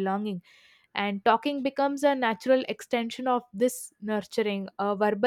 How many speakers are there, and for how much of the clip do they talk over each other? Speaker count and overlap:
1, no overlap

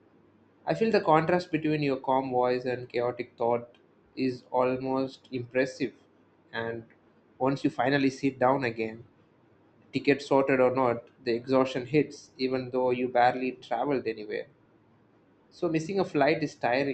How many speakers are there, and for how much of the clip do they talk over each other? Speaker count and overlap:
1, no overlap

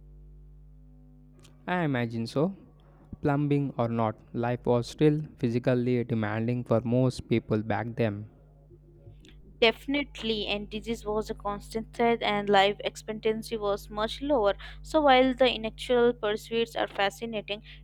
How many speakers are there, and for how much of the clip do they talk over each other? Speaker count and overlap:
2, no overlap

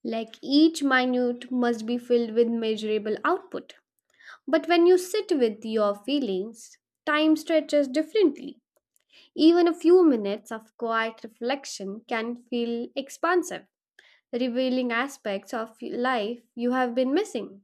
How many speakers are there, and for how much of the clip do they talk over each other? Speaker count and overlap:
1, no overlap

